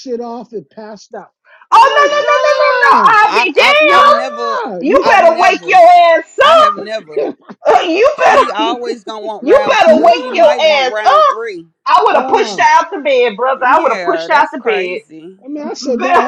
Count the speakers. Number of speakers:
three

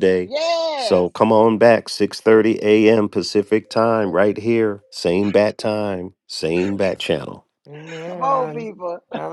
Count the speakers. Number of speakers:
three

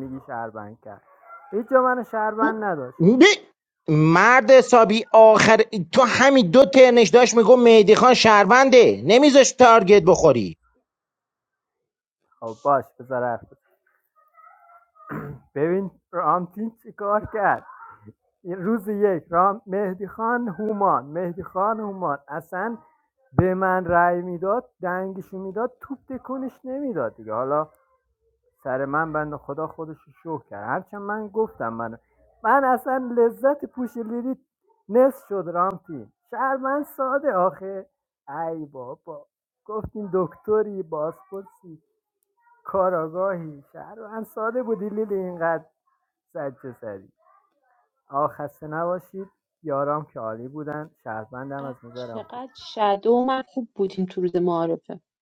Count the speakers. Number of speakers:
three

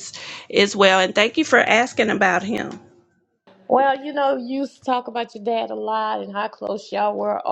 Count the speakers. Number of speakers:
two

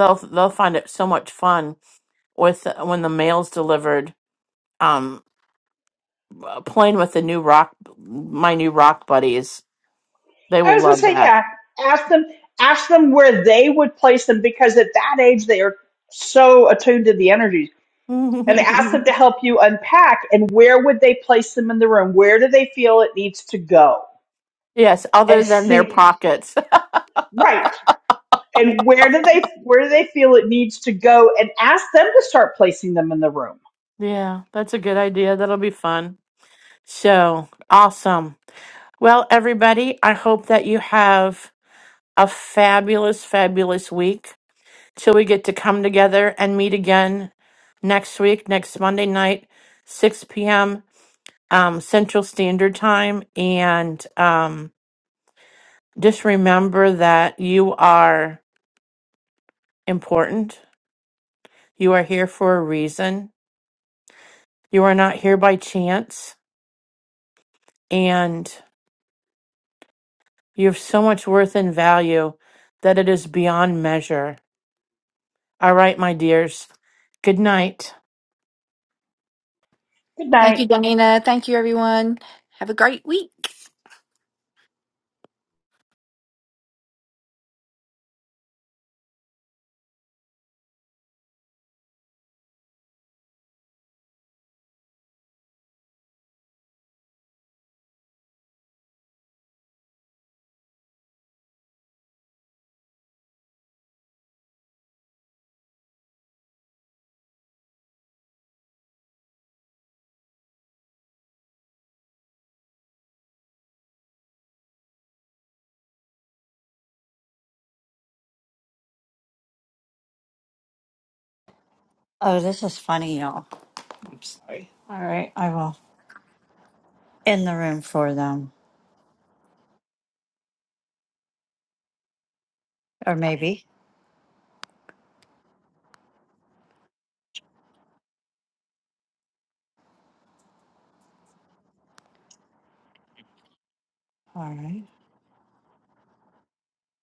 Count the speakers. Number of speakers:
four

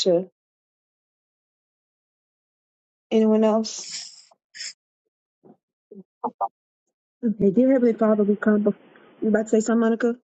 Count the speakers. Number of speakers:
one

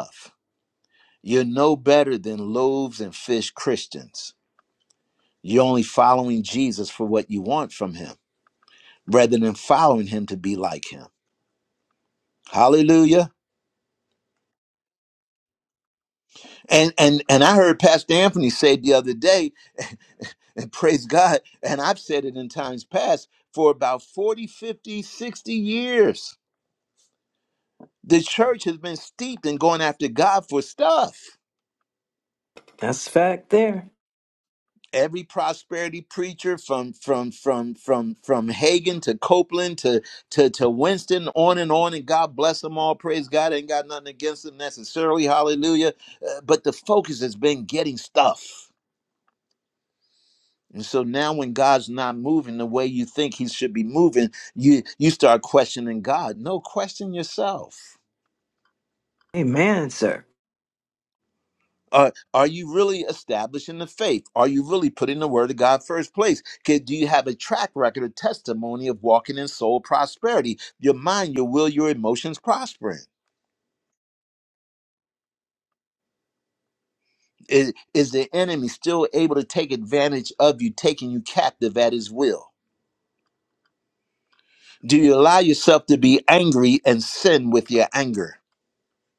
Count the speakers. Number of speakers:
two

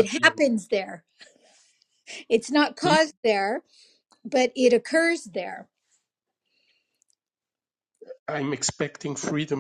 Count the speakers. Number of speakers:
two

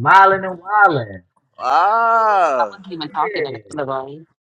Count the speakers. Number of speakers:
three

